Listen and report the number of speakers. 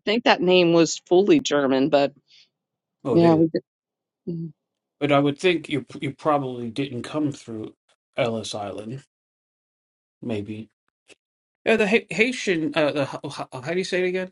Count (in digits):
2